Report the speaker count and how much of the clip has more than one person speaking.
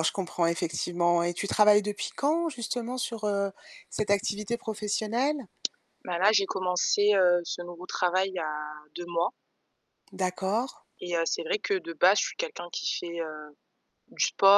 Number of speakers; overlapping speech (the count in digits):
2, no overlap